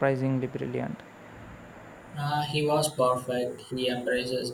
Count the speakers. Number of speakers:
2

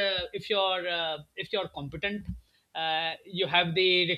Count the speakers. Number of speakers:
1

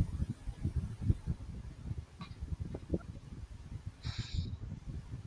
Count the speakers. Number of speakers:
0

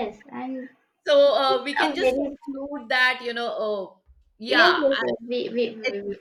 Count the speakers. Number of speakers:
2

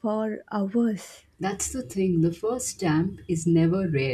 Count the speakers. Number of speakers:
2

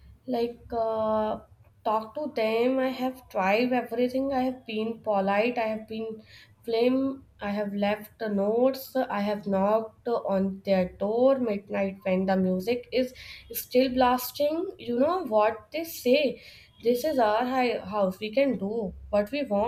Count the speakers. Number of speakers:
1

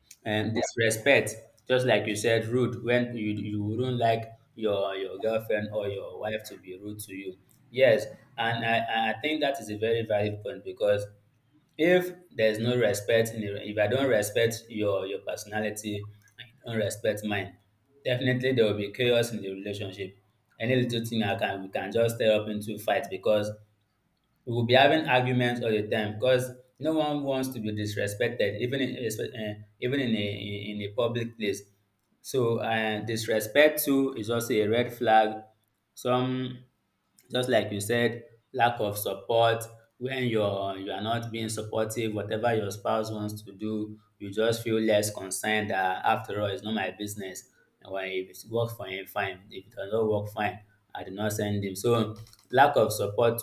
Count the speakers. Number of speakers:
1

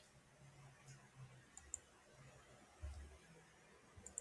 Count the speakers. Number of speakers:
0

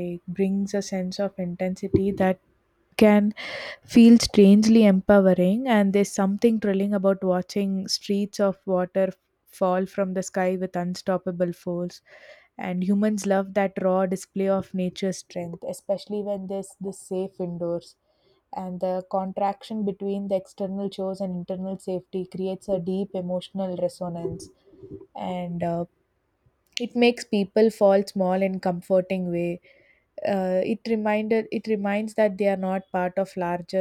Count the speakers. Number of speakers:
1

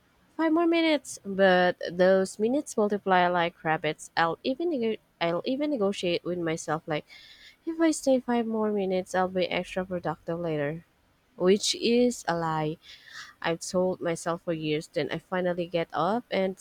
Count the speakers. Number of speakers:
1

